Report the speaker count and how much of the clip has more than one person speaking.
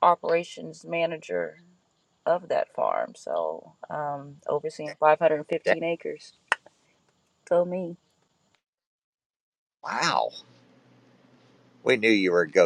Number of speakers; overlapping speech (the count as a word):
two, about 1%